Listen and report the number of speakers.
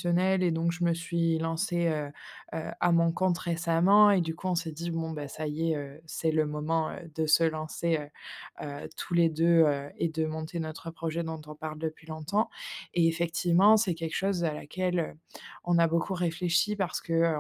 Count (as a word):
one